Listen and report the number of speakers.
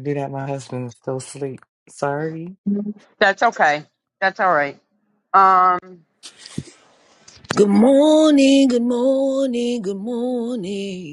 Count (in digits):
3